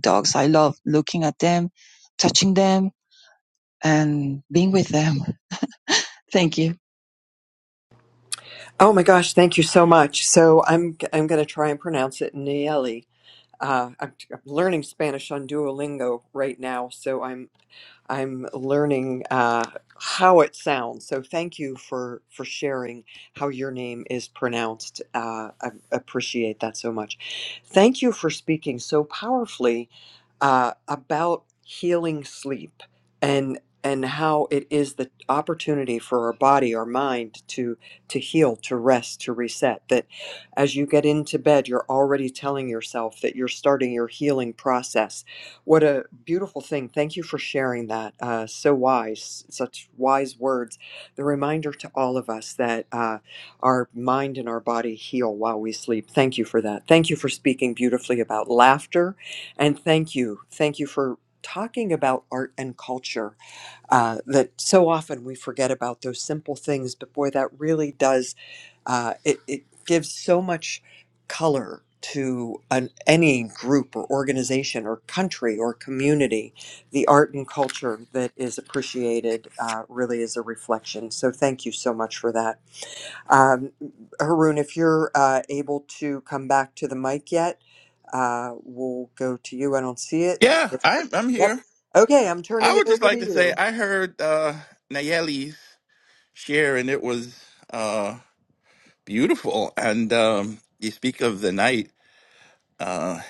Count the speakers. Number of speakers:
3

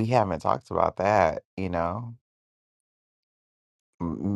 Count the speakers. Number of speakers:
1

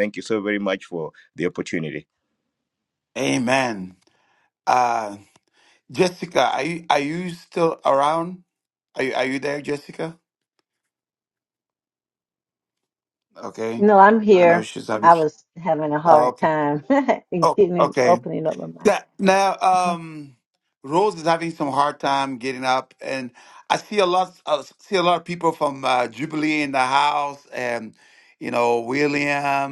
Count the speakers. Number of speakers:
3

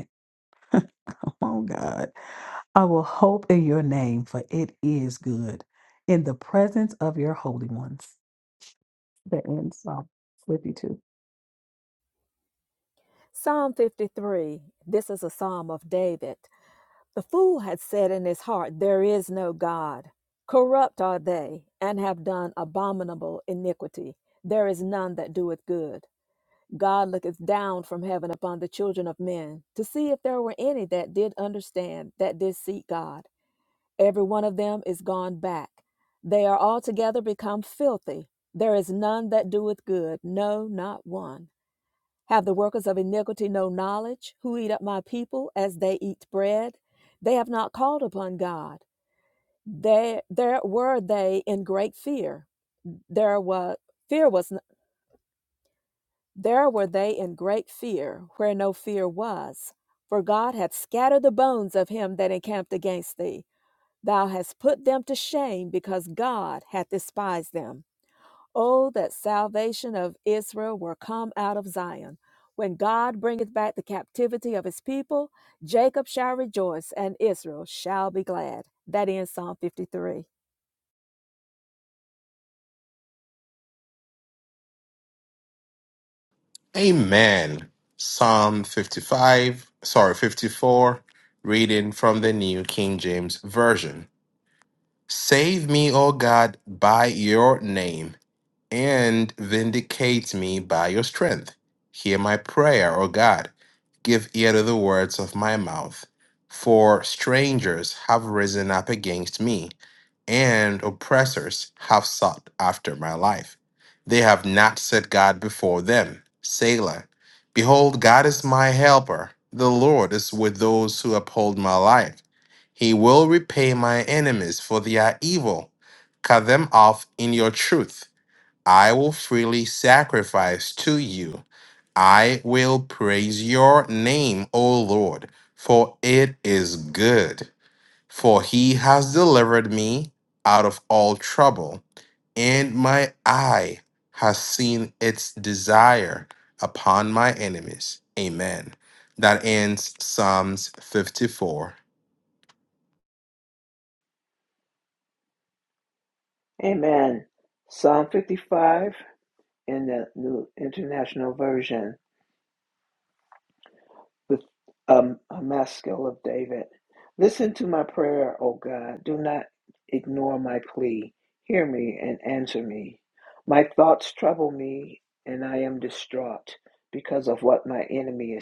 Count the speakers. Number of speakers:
4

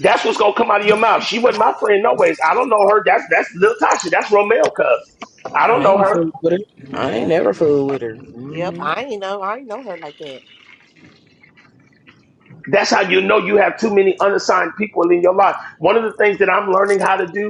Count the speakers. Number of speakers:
3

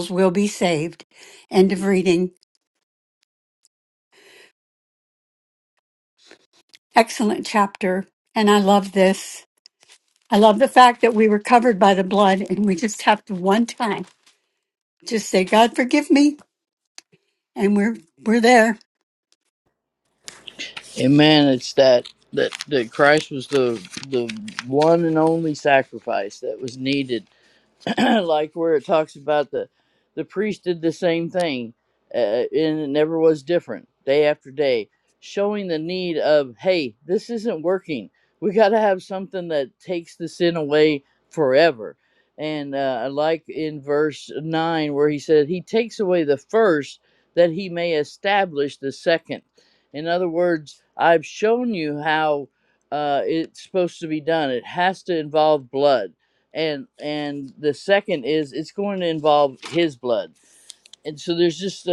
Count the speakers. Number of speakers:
2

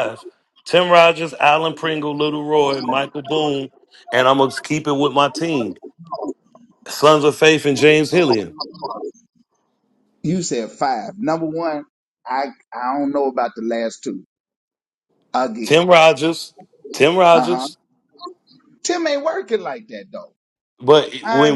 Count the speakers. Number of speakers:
2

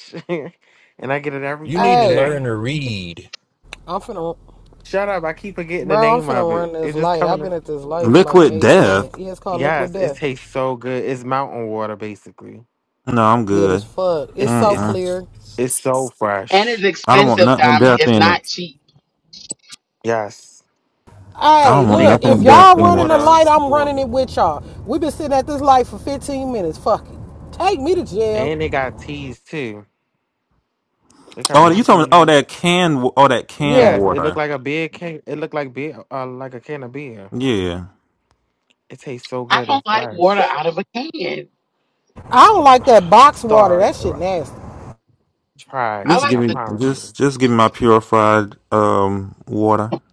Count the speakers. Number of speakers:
5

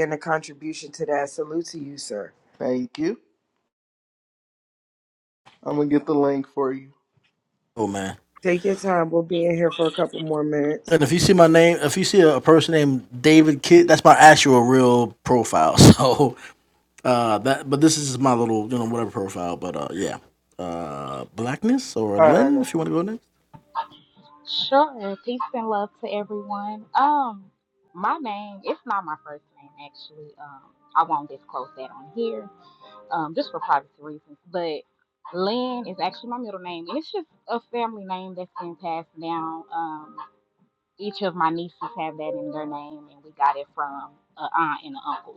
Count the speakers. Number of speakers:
4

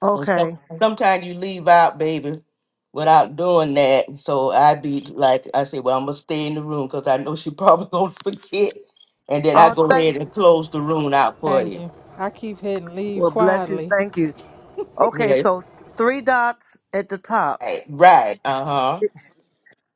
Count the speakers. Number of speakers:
3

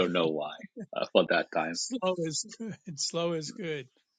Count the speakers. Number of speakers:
2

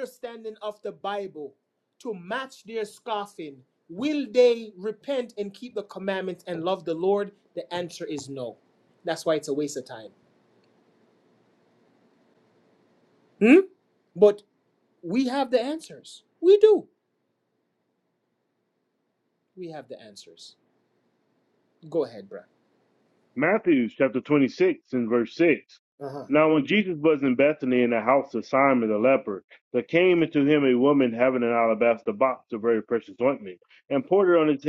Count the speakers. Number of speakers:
2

